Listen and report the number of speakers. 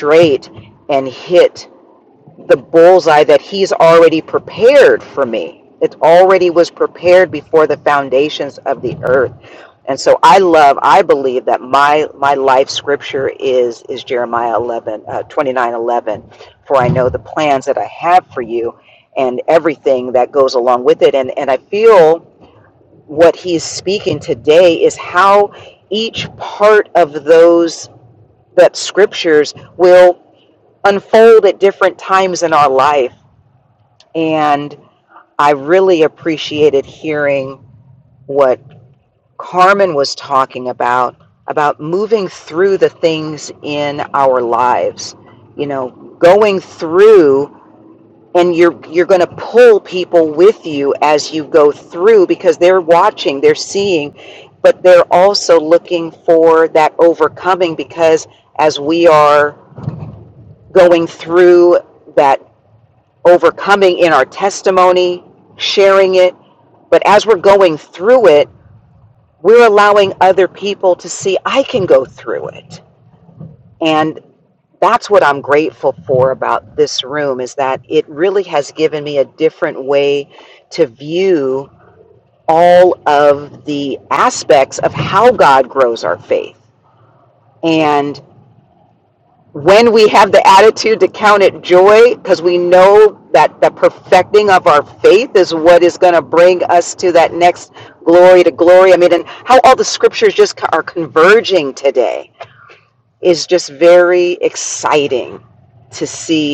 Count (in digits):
1